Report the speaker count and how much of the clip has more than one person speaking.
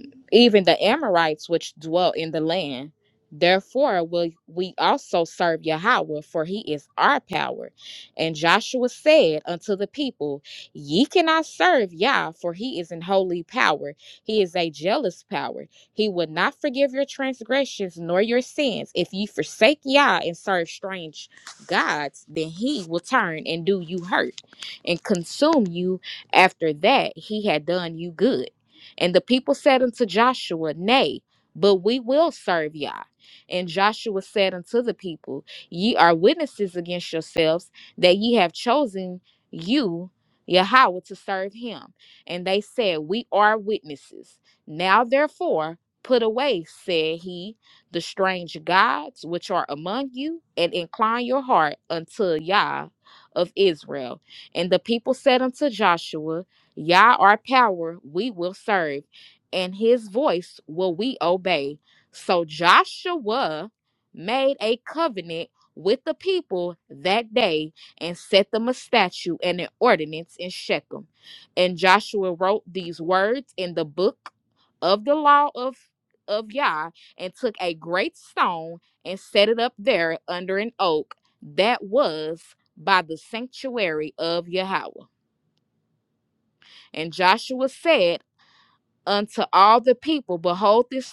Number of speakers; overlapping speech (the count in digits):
1, no overlap